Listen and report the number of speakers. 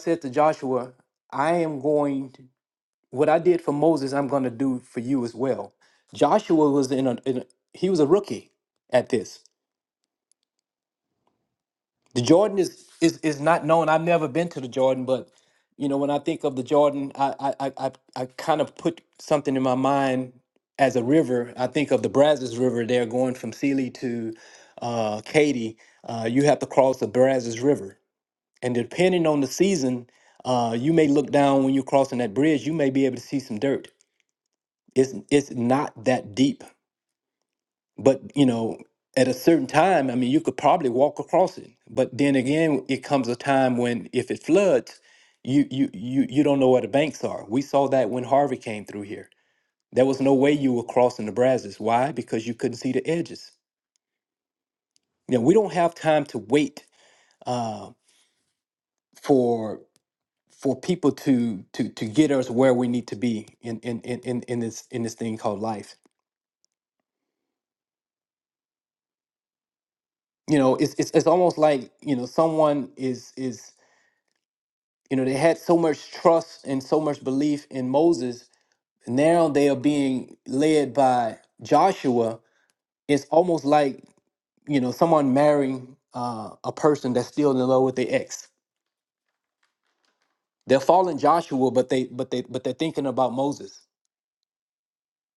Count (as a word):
one